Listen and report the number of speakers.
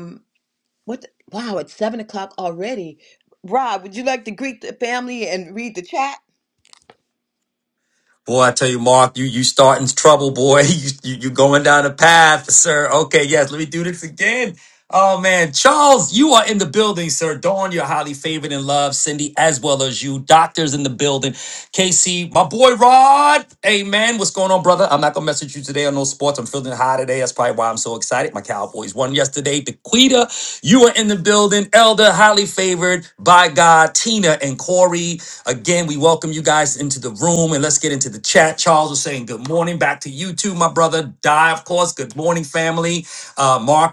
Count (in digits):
2